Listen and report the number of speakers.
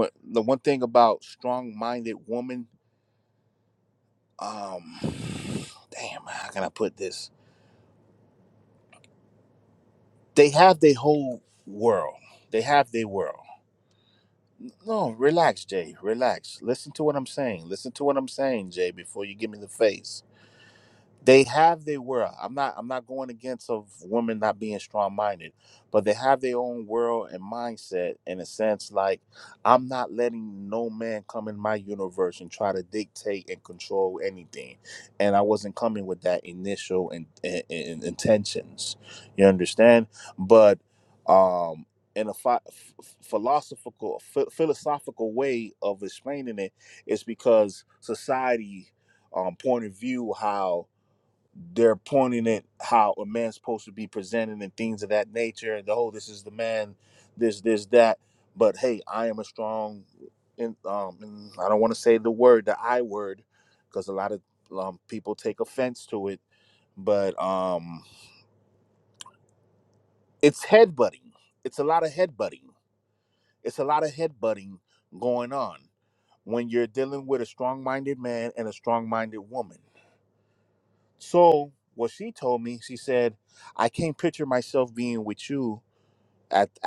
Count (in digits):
1